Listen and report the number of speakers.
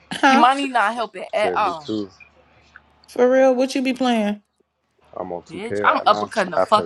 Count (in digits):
3